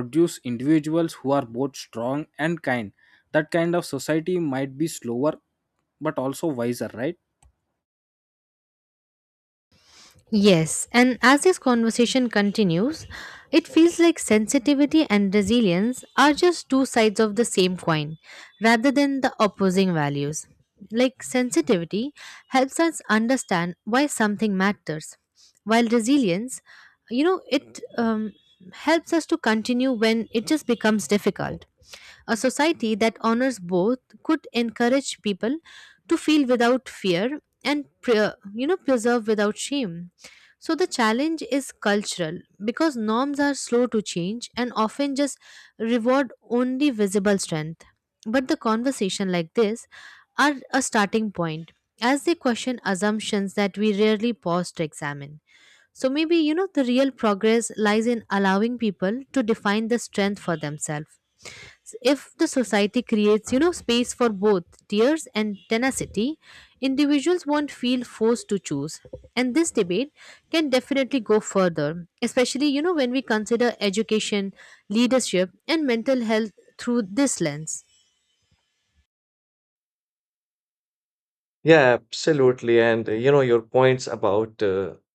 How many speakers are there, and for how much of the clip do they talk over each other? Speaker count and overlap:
three, no overlap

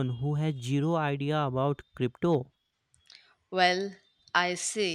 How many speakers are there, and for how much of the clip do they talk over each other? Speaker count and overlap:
two, no overlap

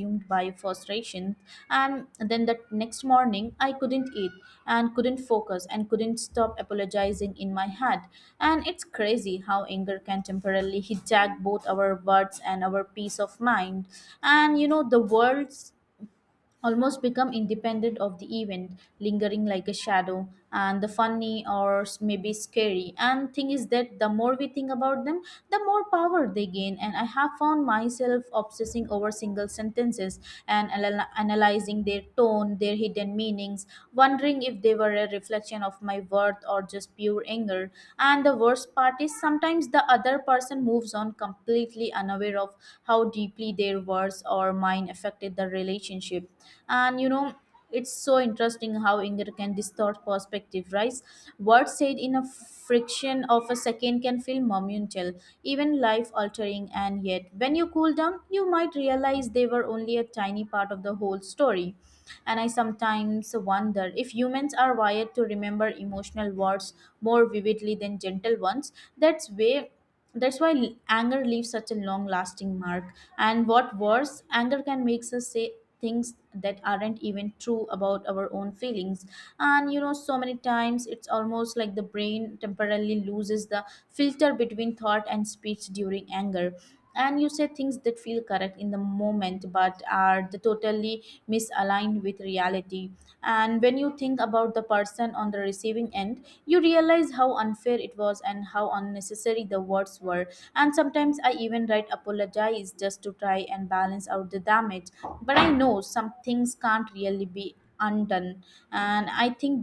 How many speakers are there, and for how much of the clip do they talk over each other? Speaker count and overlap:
one, no overlap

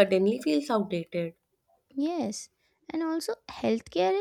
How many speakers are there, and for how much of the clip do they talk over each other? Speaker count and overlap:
two, no overlap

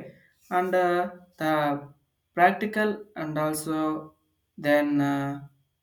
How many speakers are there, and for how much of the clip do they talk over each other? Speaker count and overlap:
one, no overlap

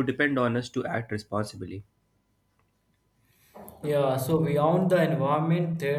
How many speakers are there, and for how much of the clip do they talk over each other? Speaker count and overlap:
two, no overlap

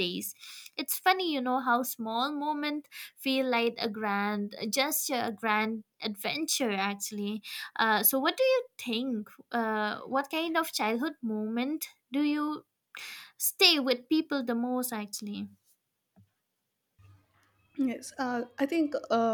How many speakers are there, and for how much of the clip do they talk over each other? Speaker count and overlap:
two, no overlap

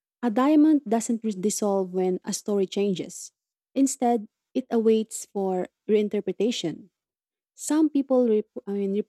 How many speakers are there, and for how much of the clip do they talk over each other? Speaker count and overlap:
one, no overlap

